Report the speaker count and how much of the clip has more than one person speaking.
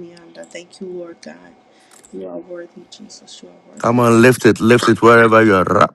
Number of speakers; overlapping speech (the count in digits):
2, about 3%